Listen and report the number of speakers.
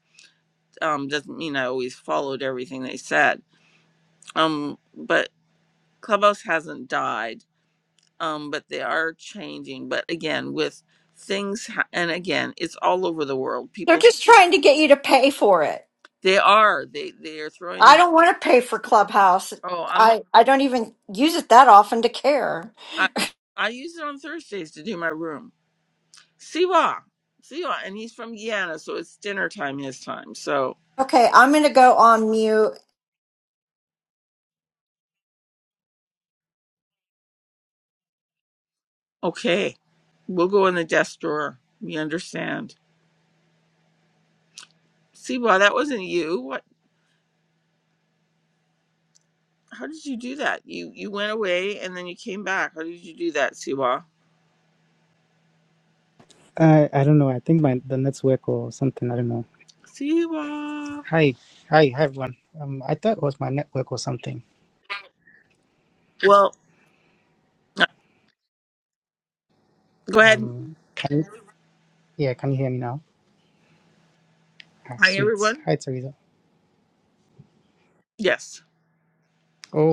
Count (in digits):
3